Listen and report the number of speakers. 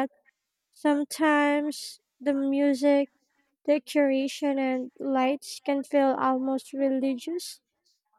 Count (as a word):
one